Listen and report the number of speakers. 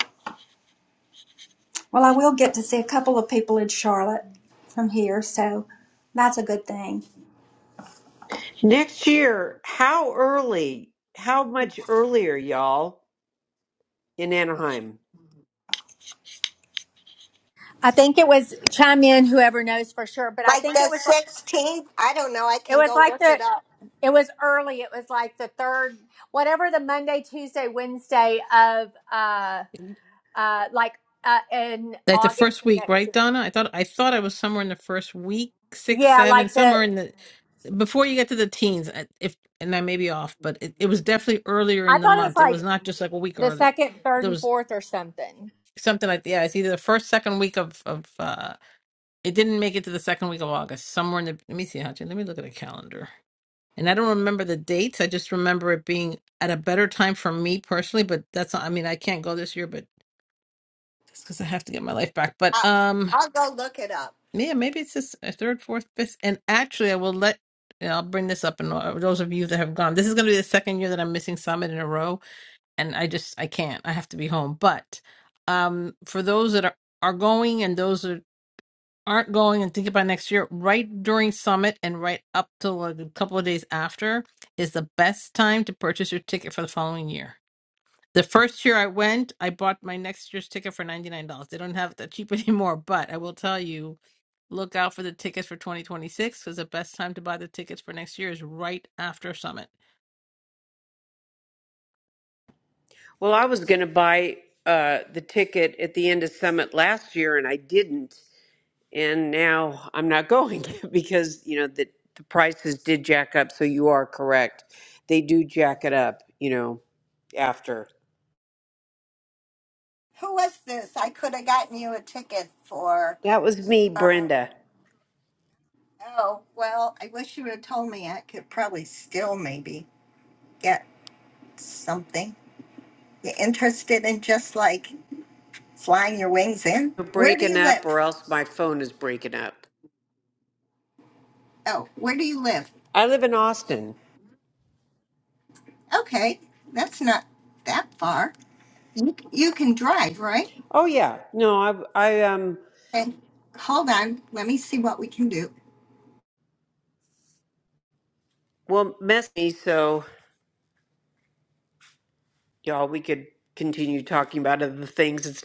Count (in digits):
5